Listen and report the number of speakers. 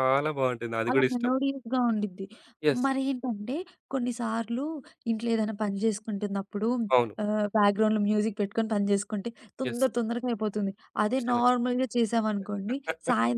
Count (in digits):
2